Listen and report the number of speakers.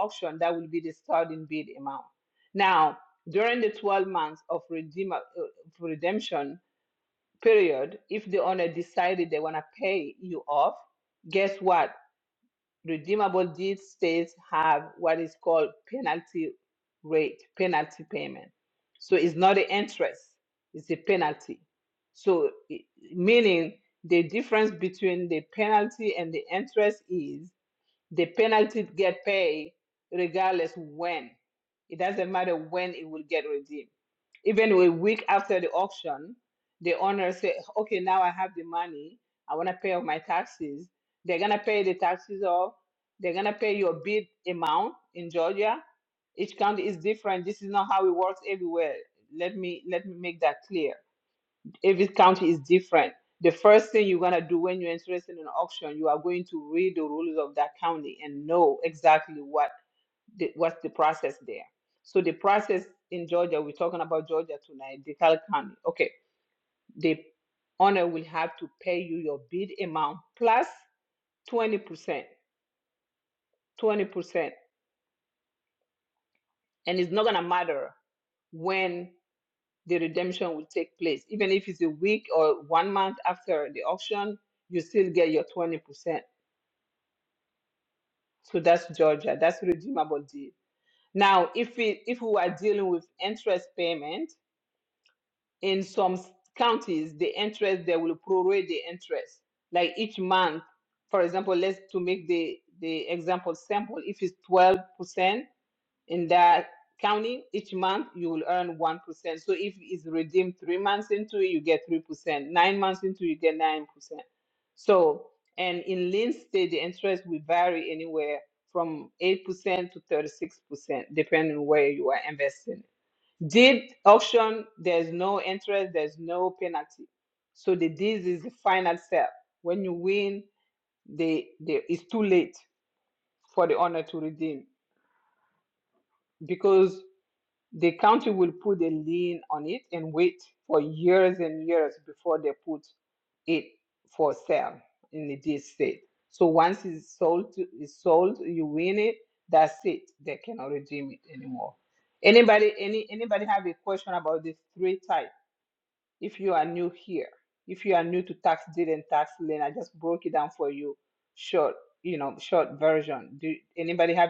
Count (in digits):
1